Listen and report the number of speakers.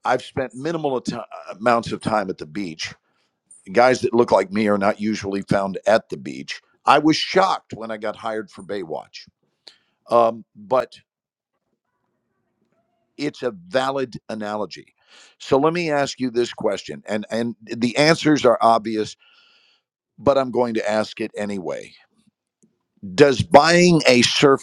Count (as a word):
one